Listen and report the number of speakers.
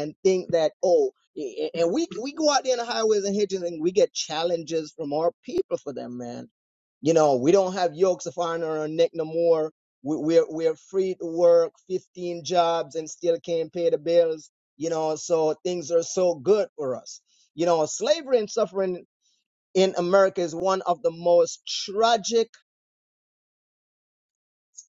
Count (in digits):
1